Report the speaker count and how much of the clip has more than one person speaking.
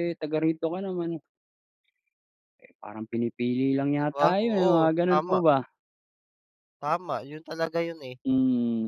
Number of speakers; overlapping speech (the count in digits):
2, about 16%